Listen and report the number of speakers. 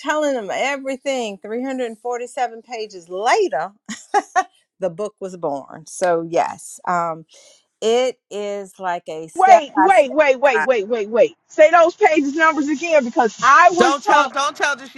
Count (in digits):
3